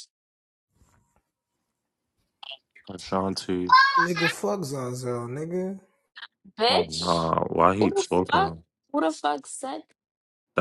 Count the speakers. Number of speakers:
three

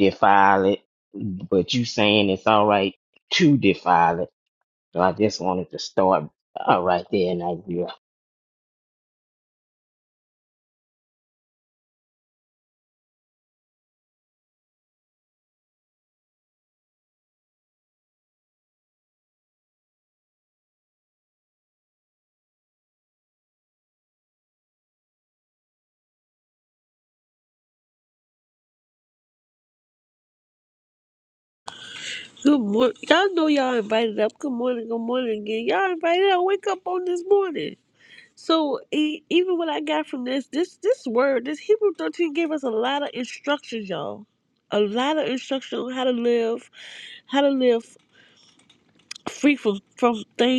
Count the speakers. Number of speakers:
two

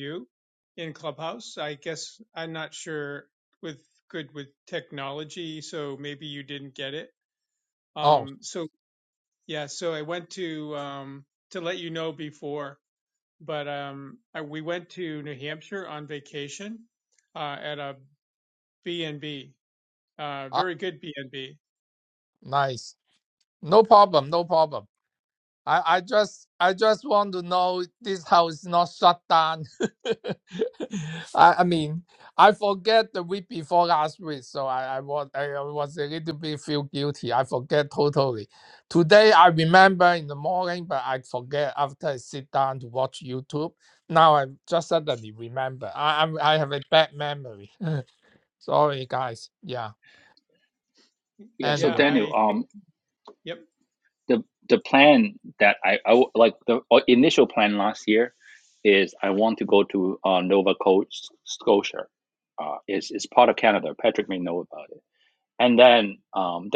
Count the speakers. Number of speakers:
three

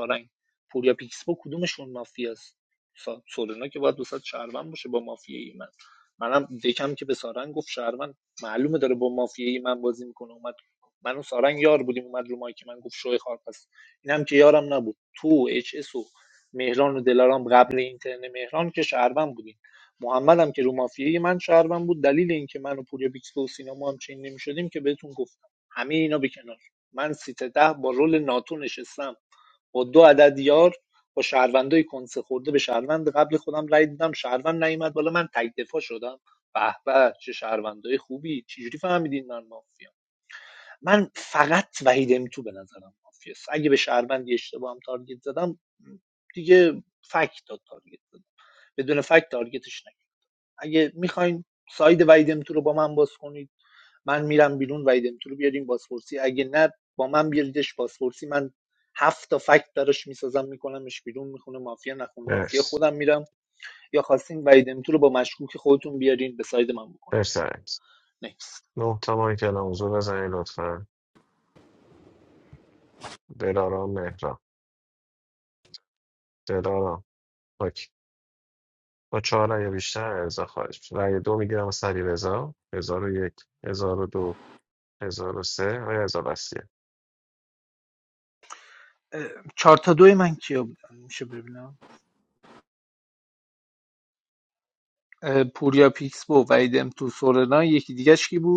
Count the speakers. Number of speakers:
two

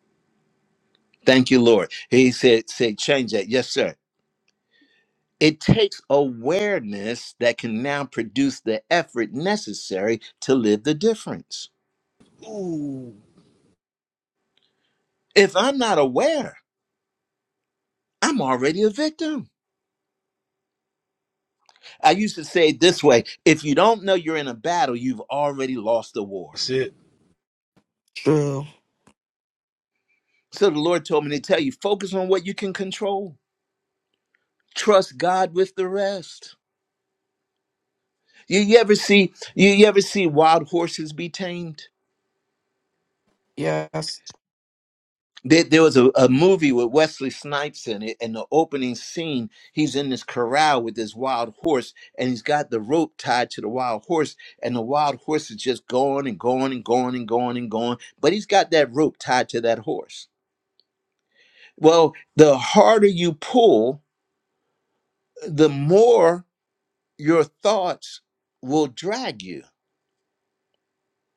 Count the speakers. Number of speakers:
three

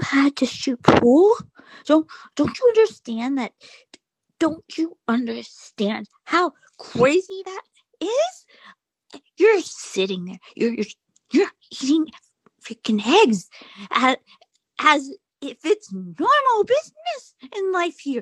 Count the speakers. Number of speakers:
one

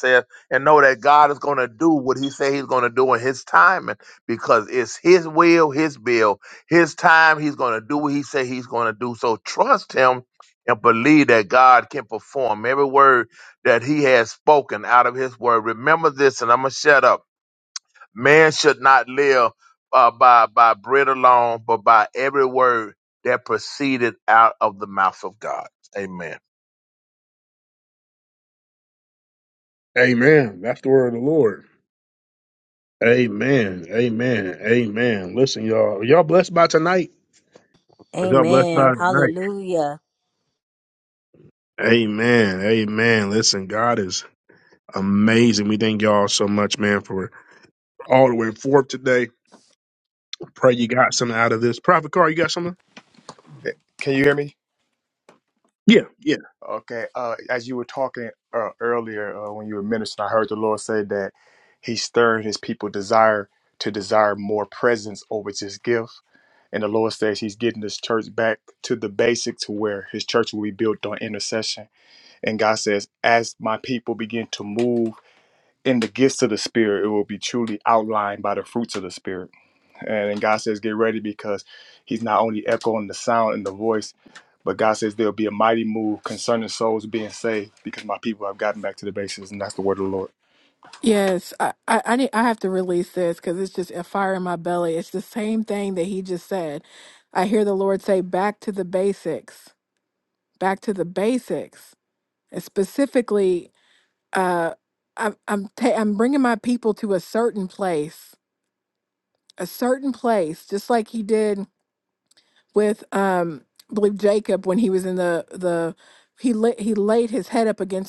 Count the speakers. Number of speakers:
five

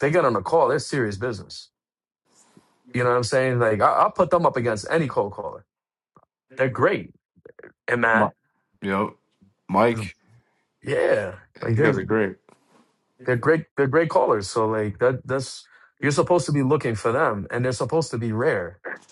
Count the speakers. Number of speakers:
two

